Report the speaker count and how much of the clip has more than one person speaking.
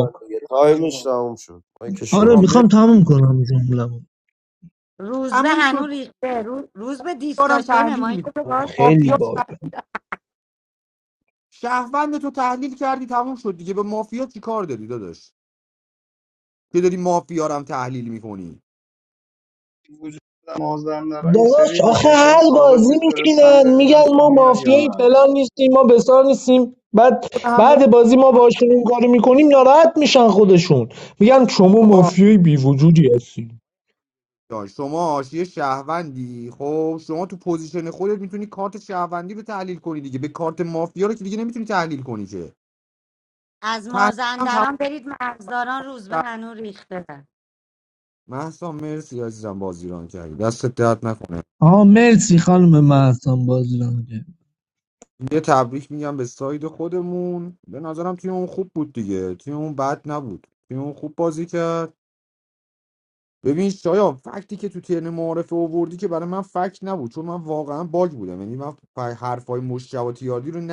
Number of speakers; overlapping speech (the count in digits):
5, about 12%